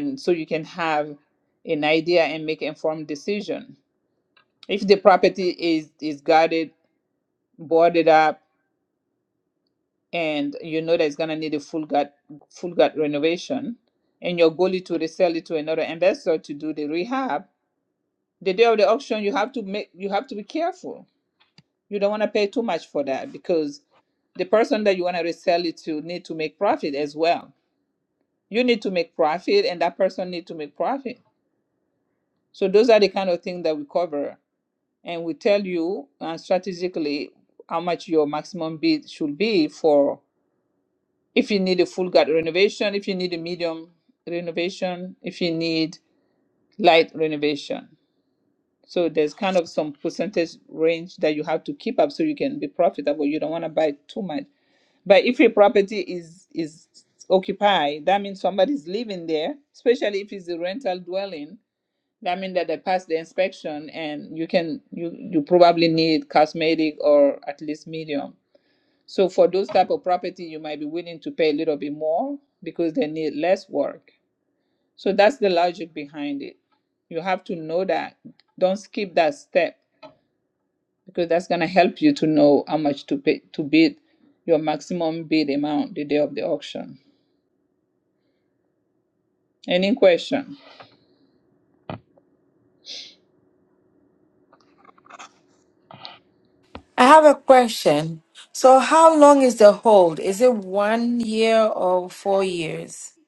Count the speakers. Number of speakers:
2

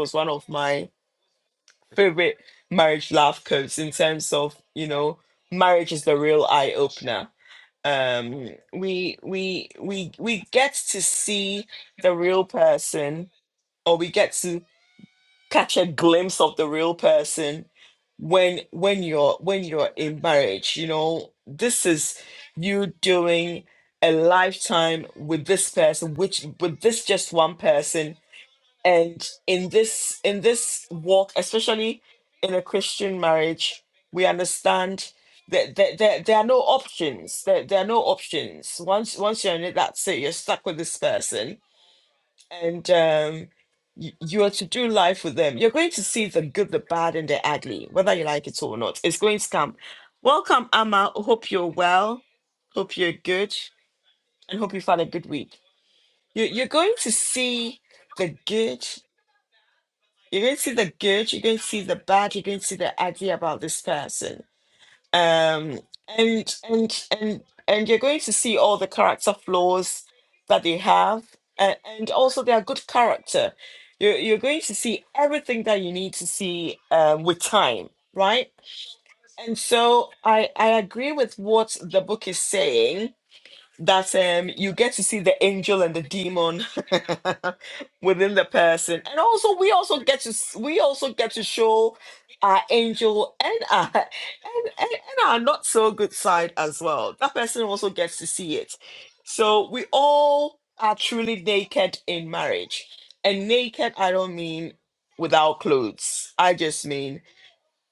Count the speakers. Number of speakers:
1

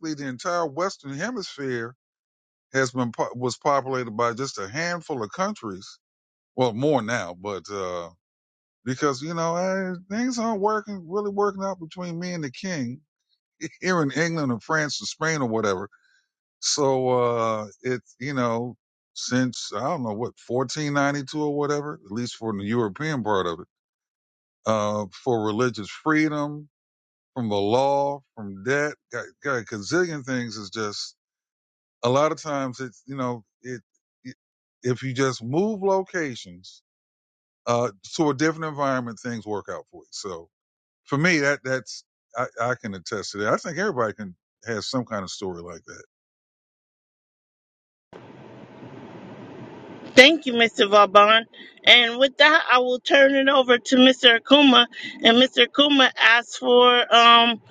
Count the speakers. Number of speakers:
2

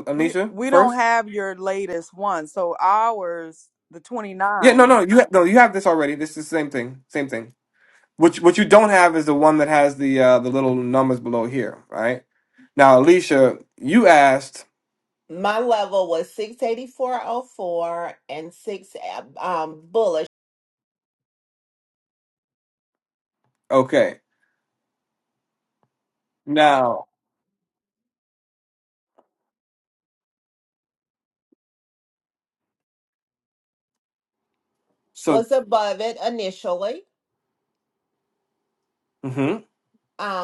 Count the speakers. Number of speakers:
3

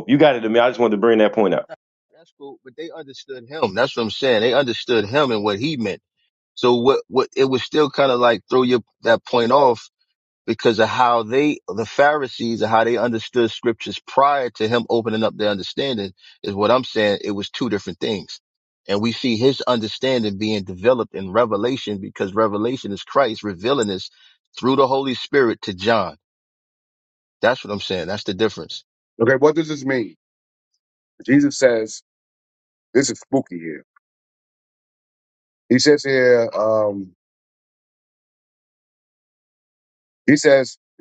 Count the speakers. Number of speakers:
3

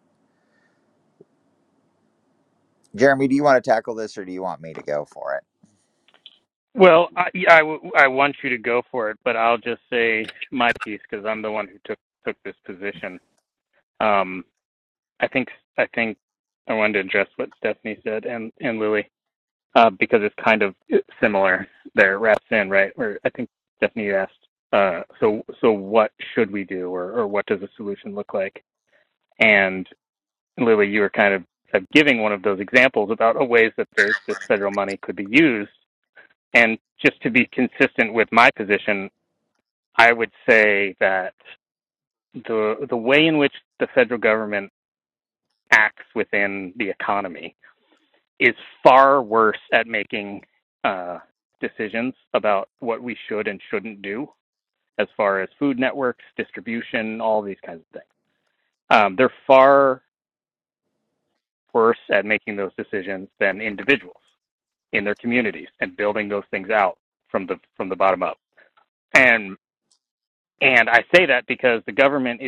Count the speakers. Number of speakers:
2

